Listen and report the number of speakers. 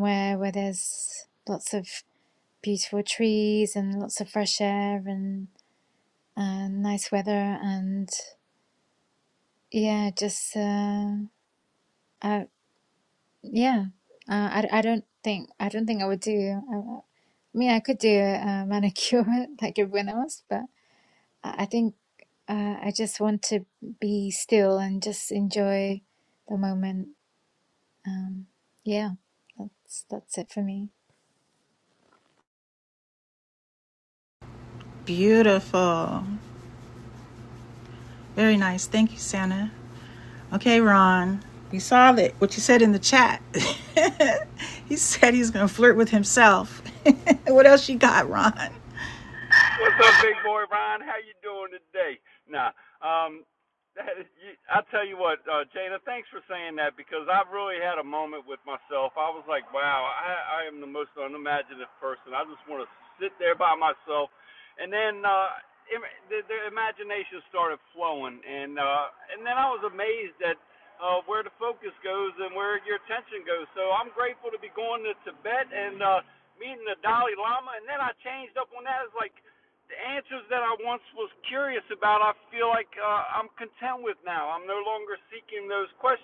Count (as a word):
three